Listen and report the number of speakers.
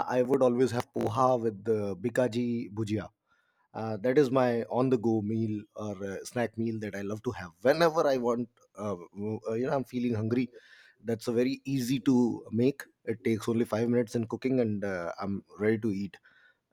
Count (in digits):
1